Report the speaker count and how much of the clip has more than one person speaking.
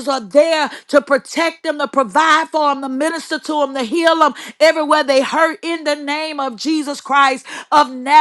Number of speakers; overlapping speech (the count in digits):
1, no overlap